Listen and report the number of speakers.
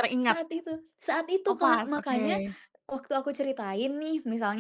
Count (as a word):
two